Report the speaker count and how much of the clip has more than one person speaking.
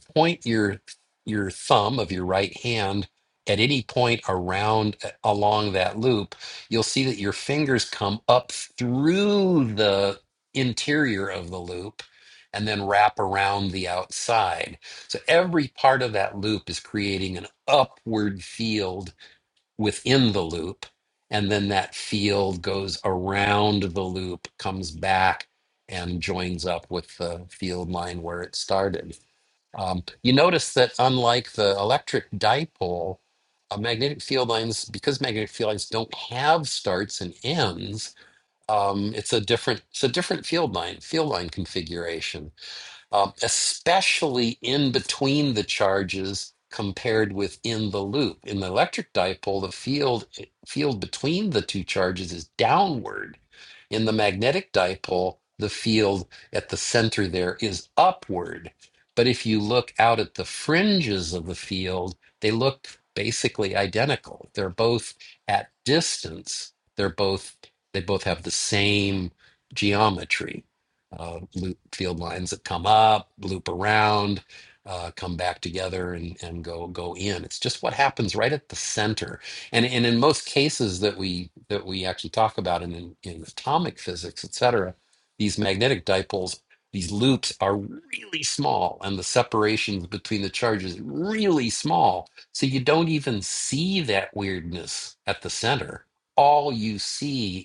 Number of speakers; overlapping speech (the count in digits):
1, no overlap